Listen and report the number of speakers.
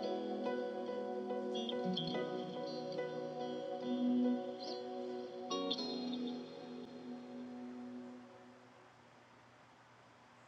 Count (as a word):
zero